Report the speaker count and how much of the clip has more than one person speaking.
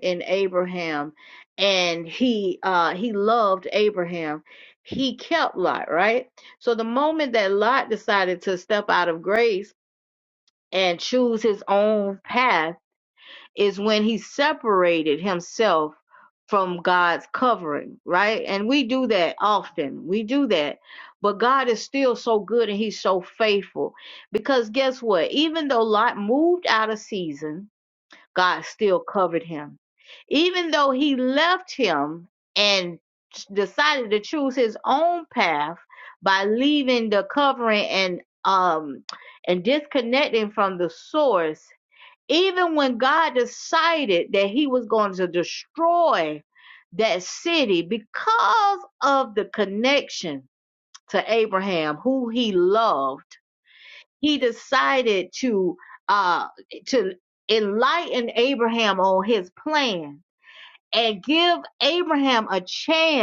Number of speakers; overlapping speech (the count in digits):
1, no overlap